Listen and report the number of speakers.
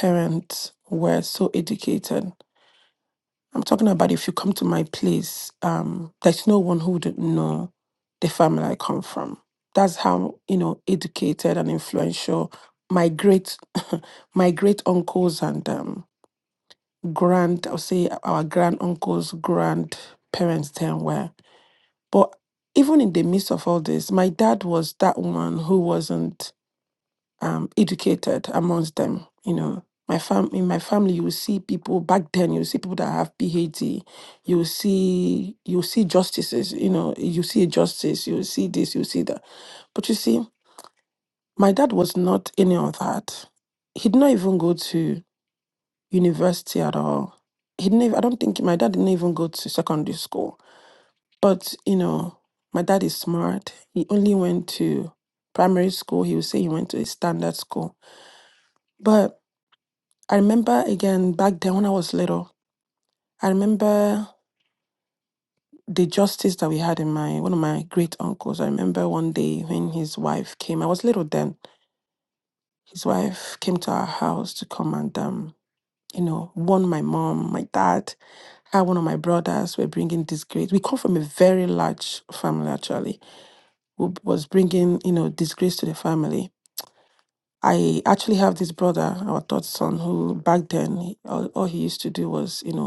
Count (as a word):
one